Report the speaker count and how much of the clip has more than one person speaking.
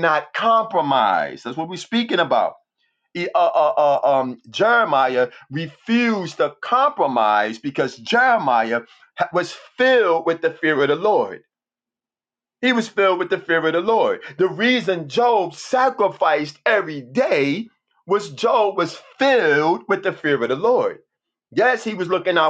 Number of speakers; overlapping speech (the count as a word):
one, no overlap